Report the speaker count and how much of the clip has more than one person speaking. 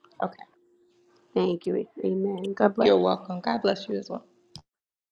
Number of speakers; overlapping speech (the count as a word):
two, about 3%